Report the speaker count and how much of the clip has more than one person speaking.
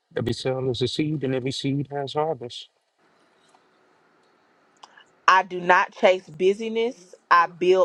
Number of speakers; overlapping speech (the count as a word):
two, no overlap